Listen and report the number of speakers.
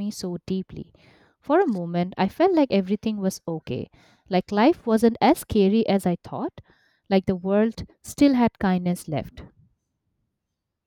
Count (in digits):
1